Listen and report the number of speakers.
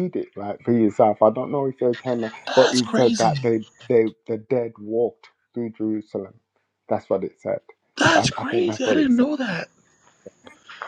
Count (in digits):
2